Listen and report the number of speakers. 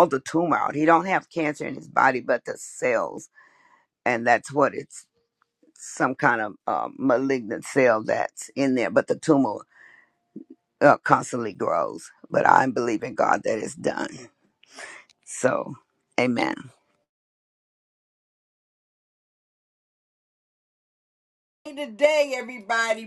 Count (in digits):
2